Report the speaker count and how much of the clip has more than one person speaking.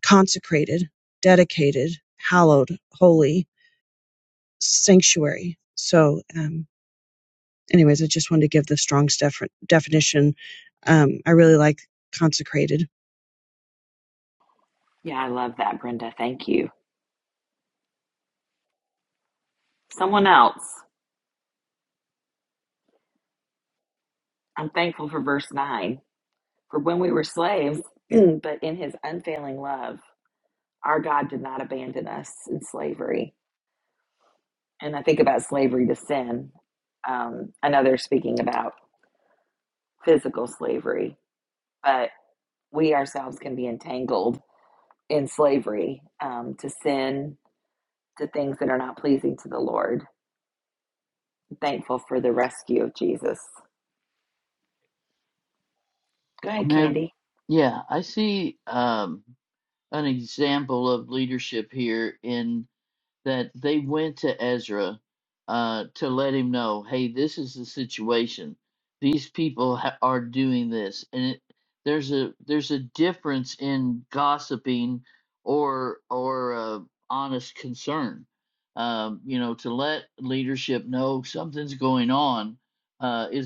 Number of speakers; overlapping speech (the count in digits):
3, under 1%